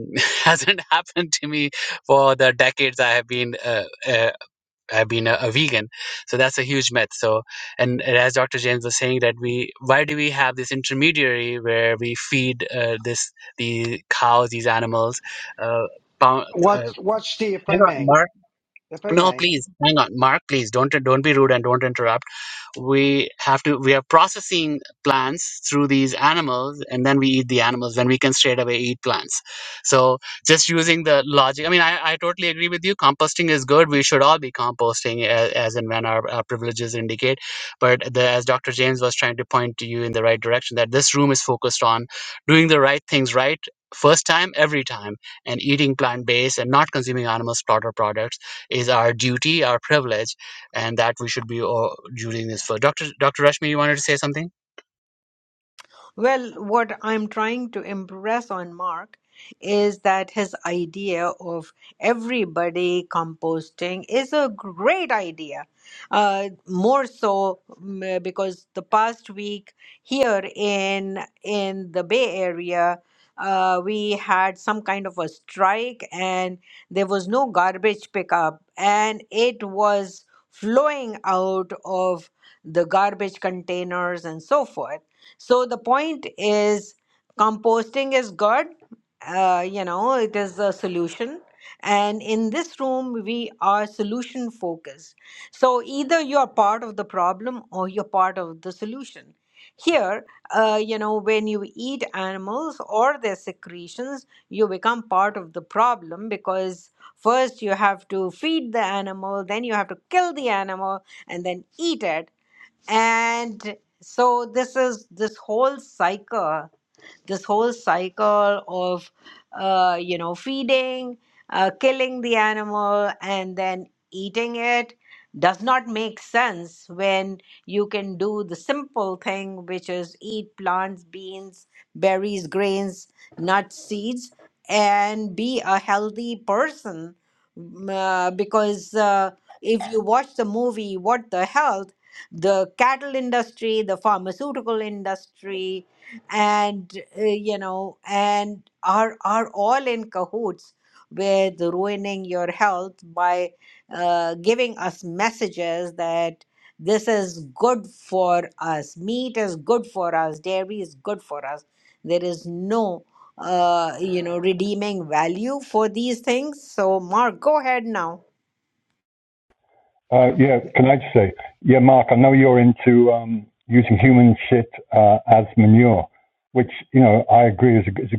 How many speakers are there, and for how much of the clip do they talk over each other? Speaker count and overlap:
four, about 1%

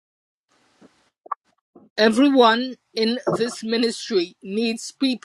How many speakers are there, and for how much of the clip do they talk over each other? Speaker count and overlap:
one, no overlap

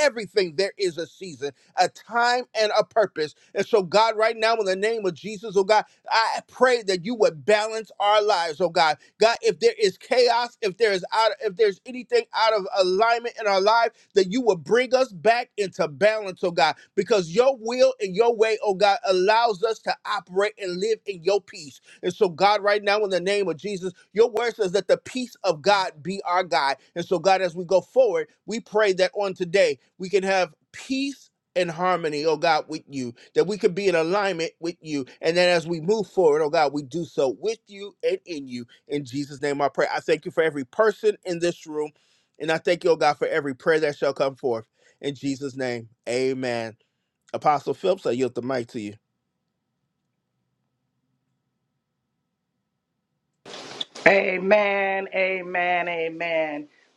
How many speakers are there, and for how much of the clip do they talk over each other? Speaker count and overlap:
two, no overlap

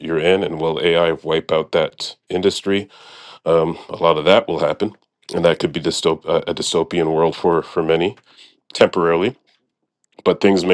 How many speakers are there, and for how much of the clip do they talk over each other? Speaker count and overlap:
one, no overlap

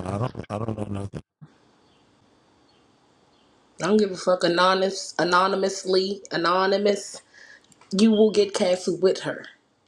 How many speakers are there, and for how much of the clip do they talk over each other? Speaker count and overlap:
two, no overlap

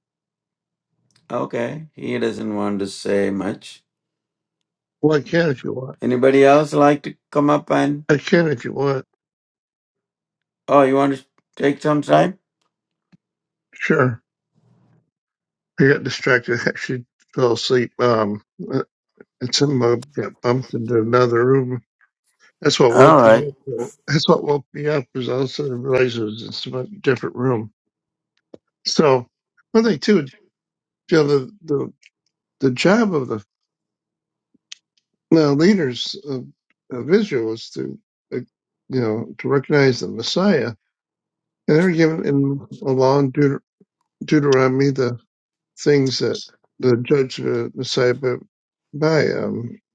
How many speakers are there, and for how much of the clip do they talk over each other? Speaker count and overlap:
two, about 1%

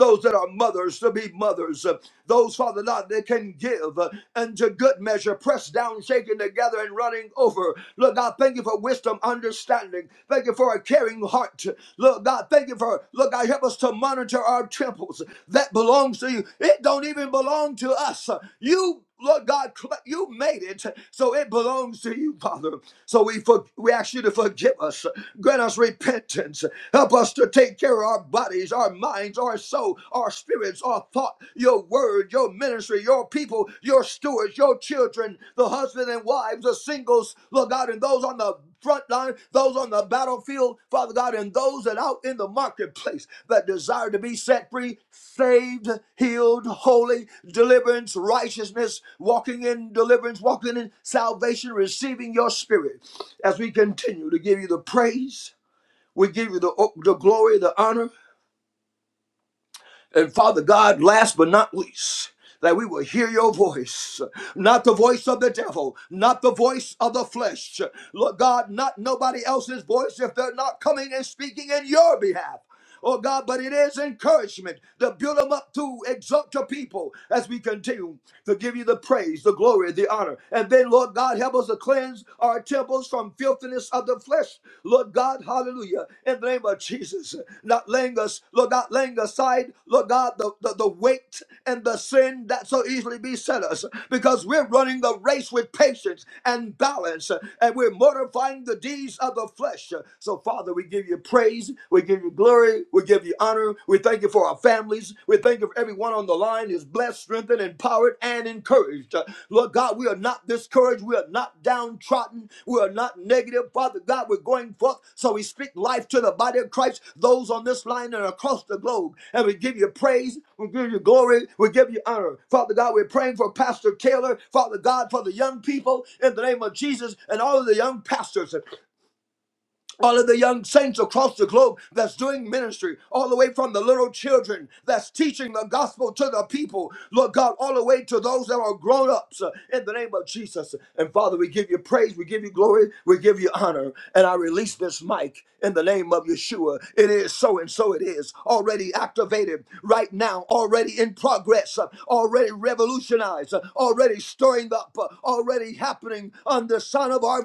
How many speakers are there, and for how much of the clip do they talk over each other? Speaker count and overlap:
one, no overlap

